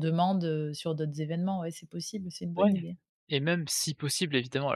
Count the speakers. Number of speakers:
two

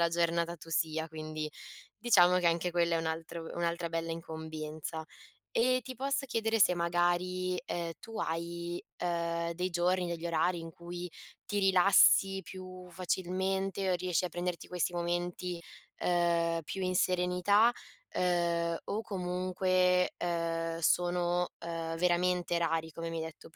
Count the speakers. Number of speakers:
one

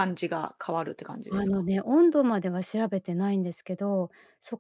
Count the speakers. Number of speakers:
two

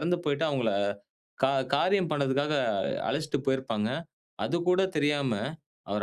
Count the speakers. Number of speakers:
one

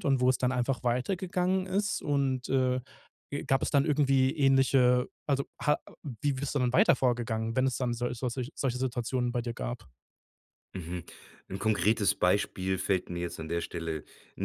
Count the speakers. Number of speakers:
two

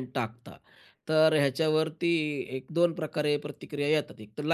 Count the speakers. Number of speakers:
one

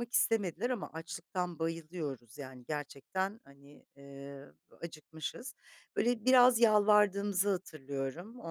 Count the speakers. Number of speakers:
one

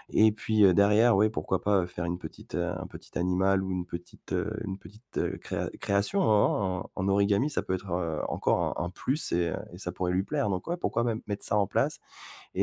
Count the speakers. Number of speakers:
one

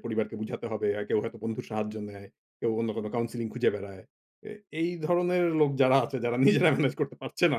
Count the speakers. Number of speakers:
one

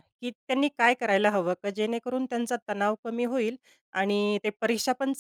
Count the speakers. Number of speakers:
one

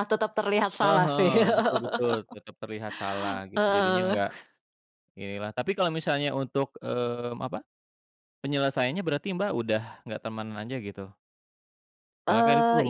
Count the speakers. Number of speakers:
two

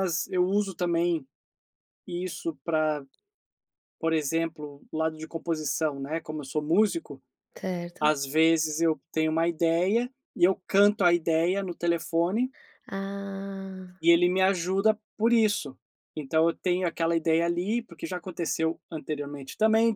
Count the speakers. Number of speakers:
two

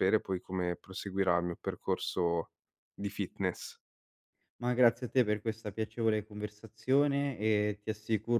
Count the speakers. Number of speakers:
two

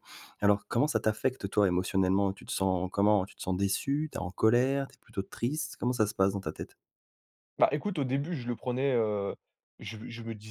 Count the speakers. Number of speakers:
two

